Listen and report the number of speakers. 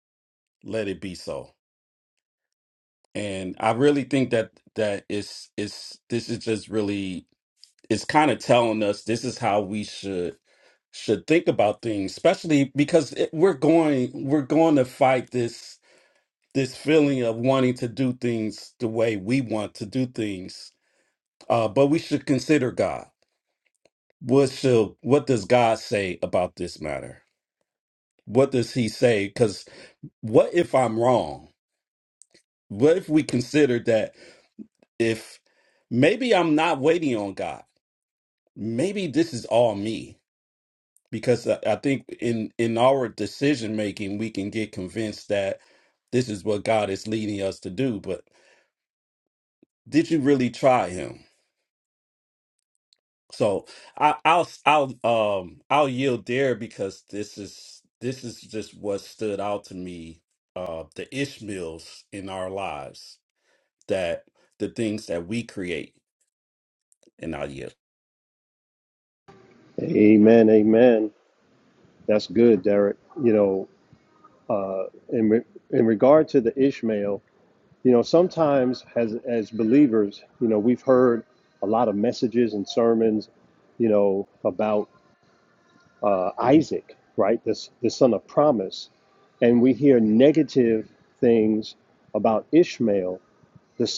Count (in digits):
2